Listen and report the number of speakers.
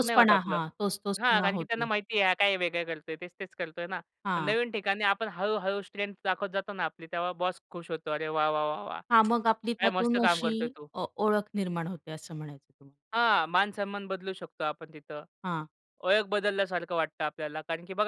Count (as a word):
two